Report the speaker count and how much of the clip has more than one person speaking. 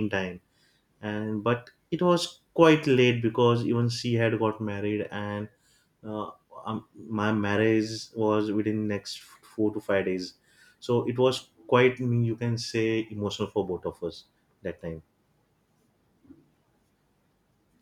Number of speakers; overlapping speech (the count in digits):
1, no overlap